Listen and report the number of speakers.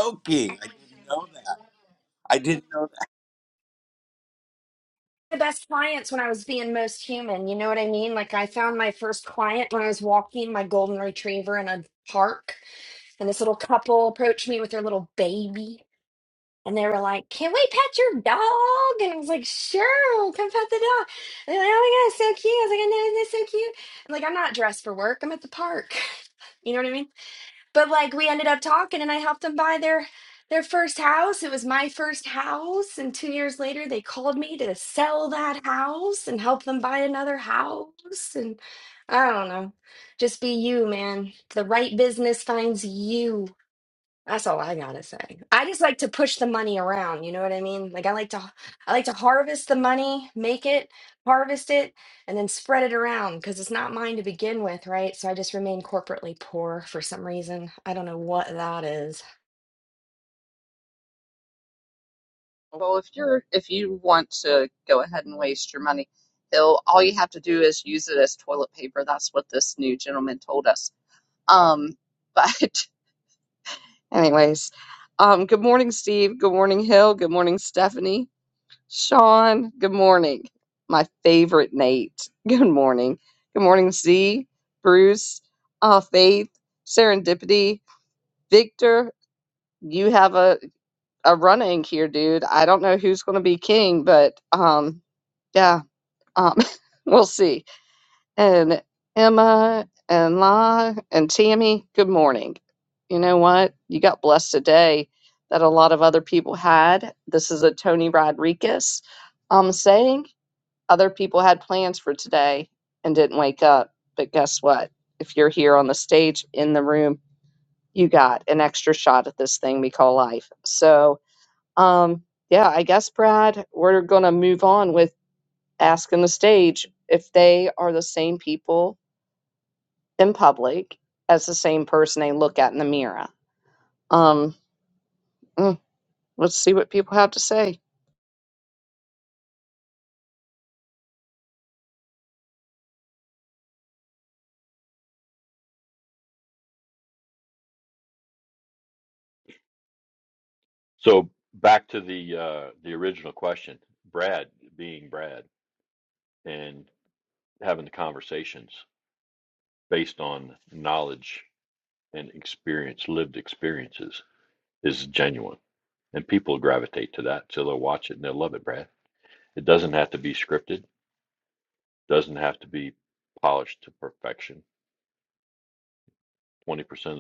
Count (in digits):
4